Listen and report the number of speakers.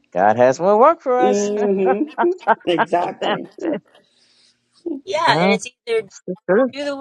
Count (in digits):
3